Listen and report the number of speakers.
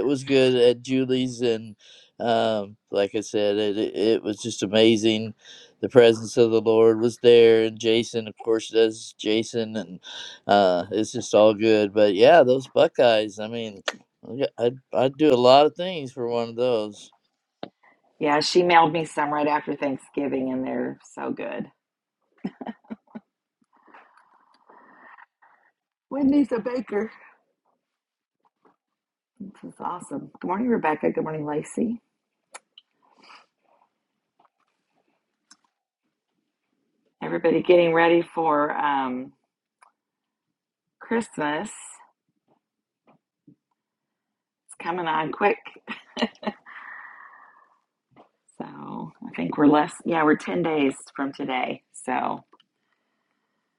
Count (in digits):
2